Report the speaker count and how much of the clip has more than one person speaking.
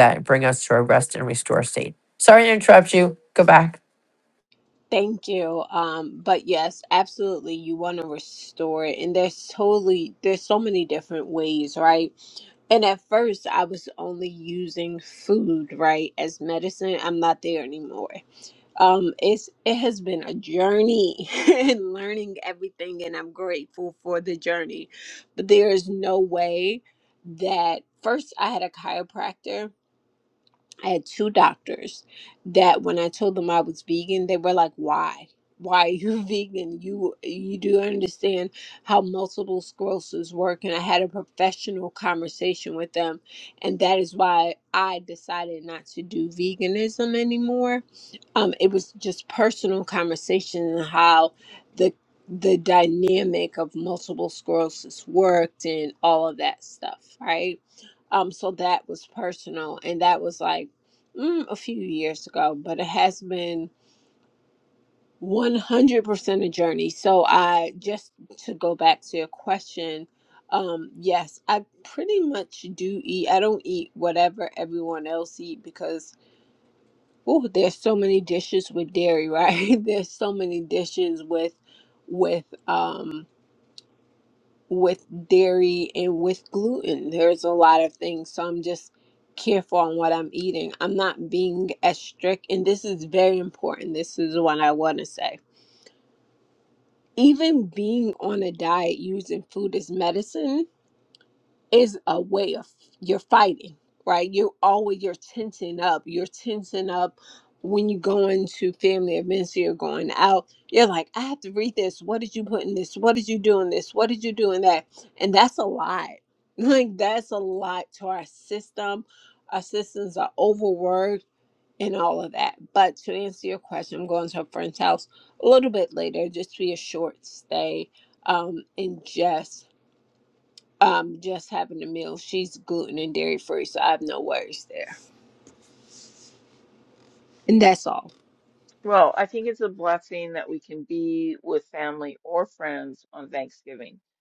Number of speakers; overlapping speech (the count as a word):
three, no overlap